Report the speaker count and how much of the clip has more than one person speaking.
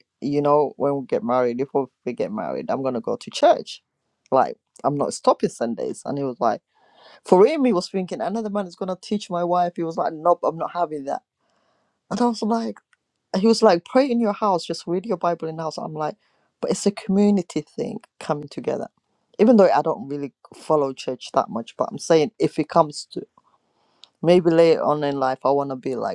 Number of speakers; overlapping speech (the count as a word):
one, no overlap